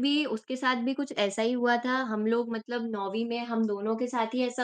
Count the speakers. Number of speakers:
one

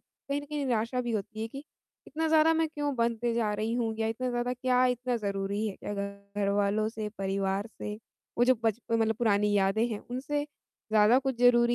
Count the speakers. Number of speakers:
one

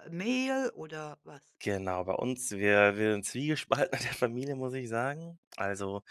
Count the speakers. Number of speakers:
two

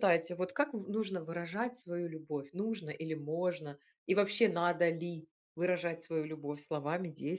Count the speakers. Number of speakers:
one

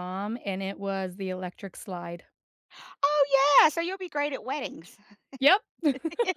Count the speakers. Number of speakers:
two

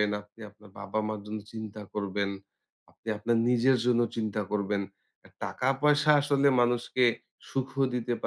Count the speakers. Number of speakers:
one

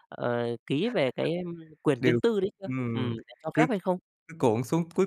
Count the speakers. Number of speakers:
two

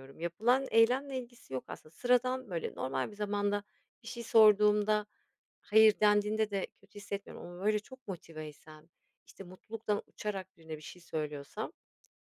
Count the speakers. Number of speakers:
one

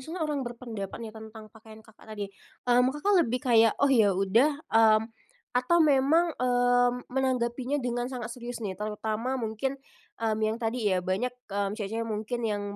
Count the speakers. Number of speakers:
one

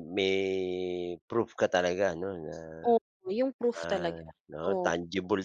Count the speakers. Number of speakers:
two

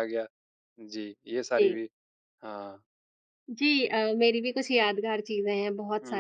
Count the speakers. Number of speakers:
two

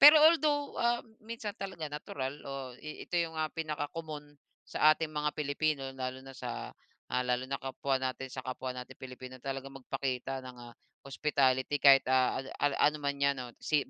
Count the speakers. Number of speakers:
one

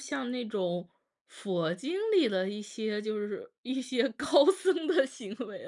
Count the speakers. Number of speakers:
one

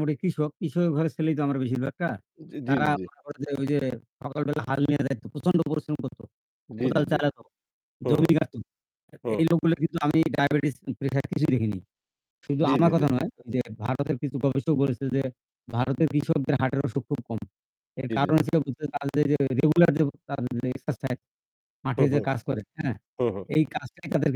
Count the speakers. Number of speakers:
two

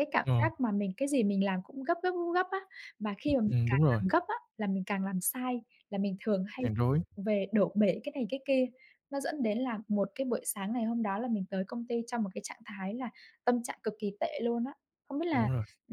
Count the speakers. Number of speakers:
two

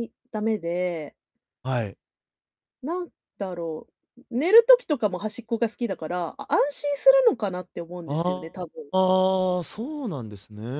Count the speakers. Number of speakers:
two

